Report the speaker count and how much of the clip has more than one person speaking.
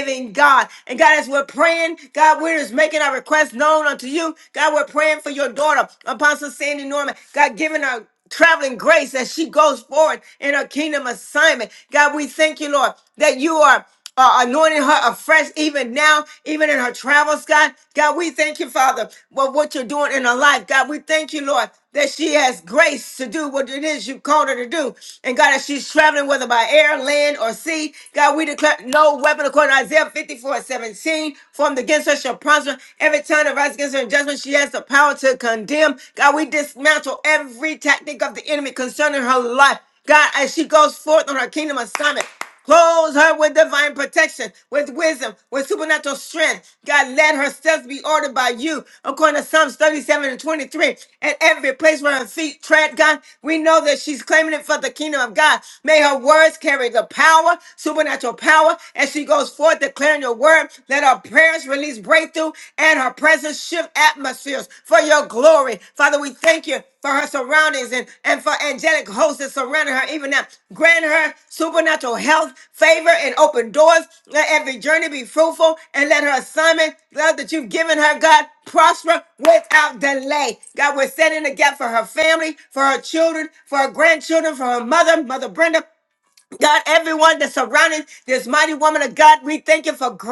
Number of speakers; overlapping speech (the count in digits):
1, no overlap